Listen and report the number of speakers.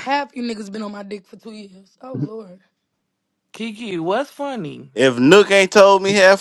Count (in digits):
3